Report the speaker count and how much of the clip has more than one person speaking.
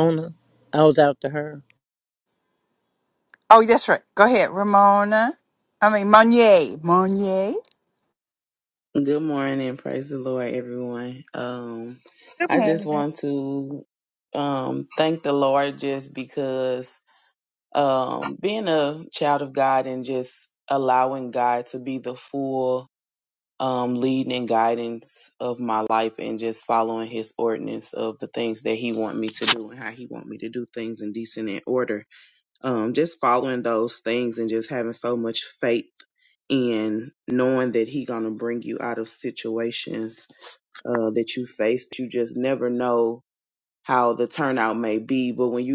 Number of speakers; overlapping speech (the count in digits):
3, no overlap